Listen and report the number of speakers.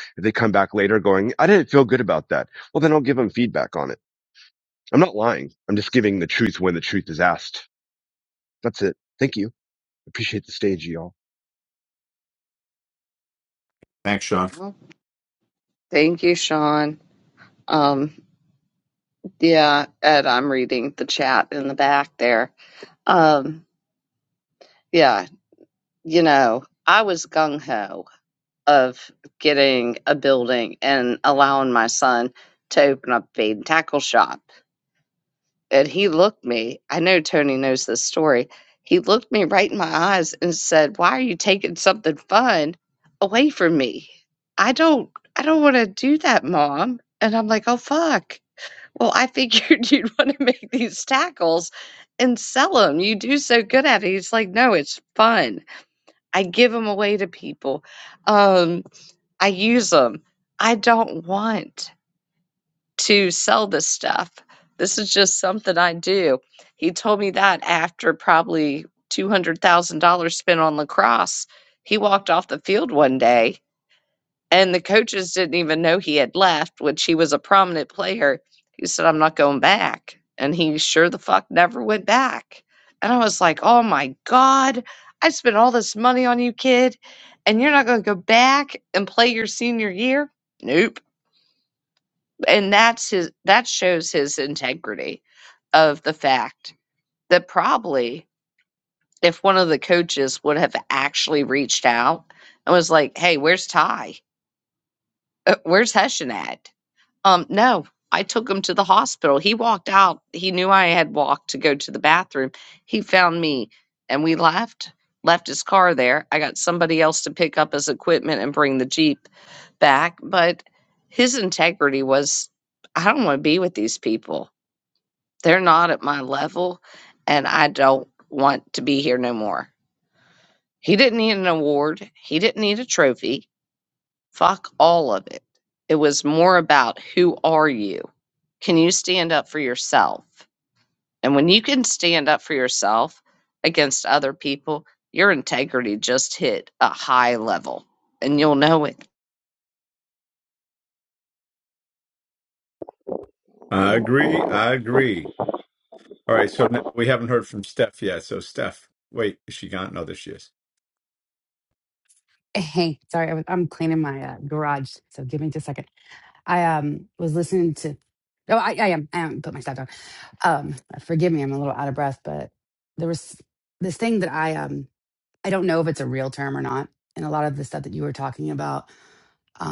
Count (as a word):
four